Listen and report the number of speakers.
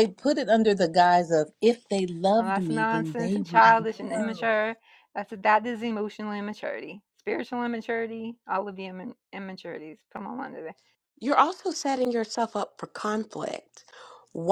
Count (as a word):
three